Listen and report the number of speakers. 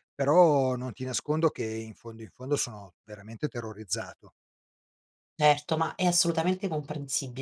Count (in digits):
2